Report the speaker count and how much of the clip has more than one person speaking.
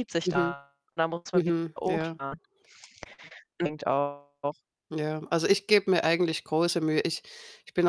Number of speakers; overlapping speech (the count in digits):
2, about 14%